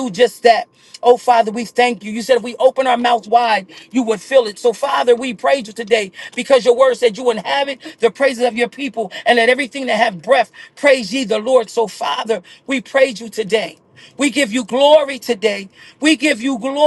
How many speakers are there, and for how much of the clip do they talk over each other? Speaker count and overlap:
1, no overlap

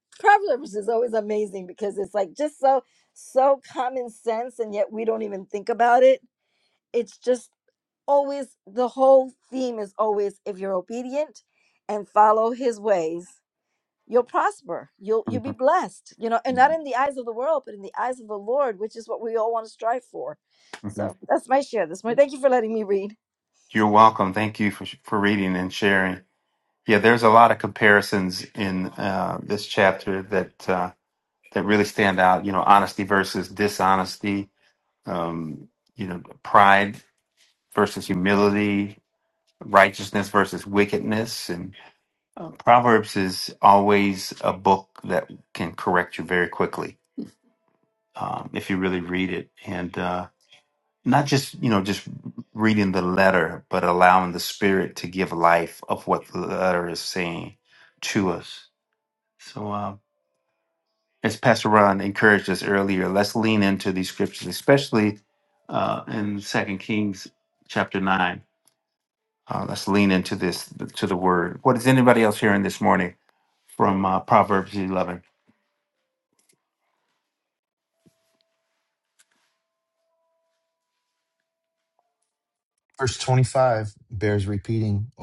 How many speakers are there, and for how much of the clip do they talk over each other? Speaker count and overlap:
3, under 1%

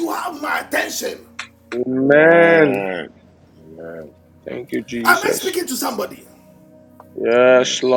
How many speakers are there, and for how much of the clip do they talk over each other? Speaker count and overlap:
3, about 24%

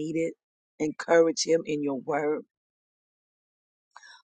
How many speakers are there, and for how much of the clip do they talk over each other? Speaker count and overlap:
1, no overlap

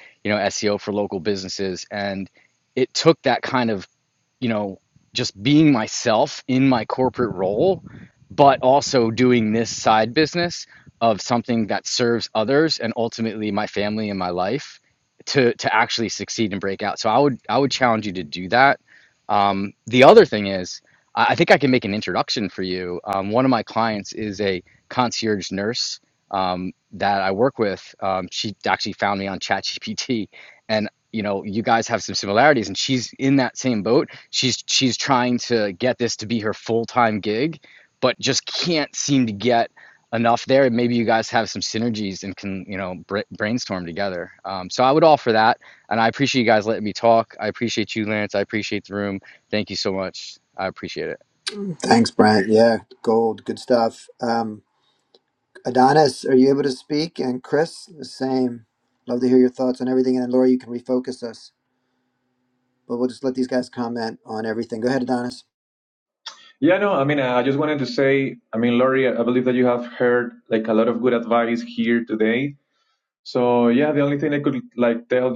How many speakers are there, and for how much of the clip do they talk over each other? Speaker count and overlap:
3, no overlap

